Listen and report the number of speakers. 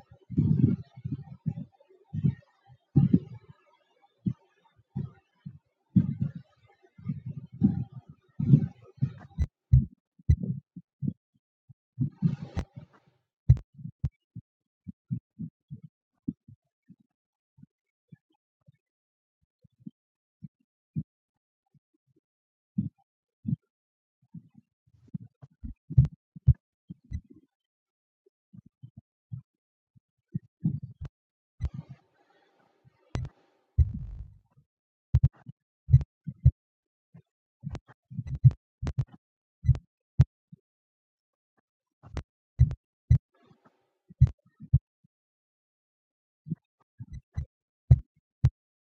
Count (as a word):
zero